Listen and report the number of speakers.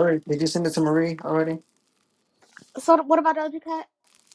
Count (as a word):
two